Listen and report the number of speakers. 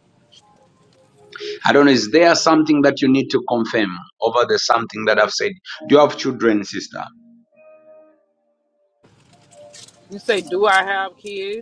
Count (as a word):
two